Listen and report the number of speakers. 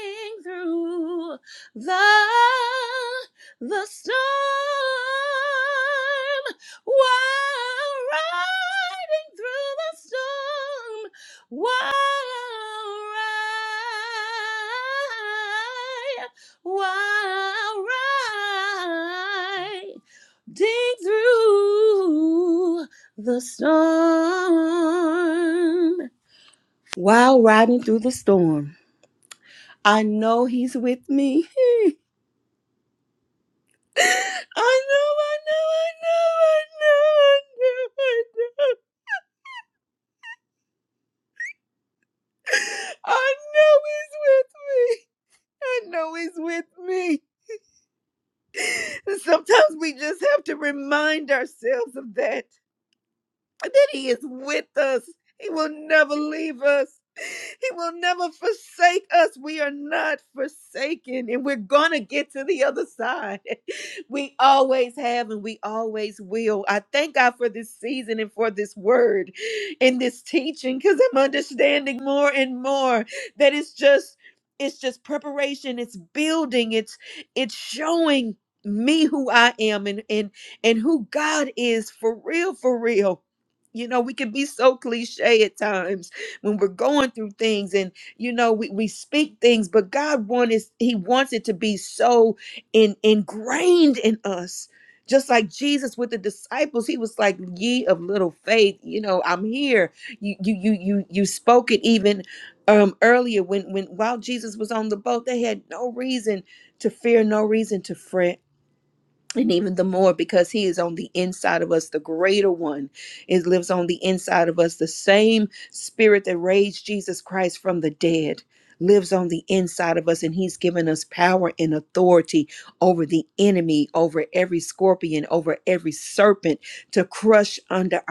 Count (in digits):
1